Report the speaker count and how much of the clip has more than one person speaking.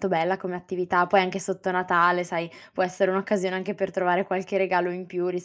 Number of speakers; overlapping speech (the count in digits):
1, no overlap